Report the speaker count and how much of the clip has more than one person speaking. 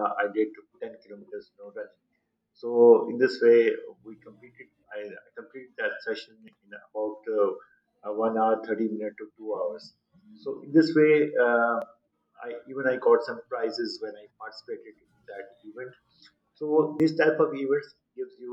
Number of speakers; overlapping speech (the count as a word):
one, no overlap